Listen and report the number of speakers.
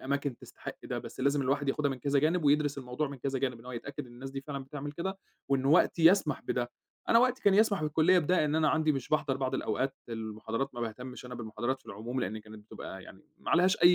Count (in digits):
1